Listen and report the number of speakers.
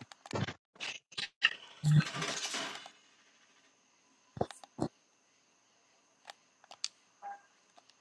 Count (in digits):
0